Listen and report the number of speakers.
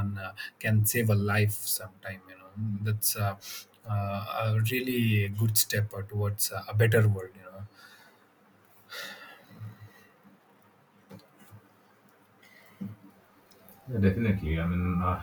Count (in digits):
2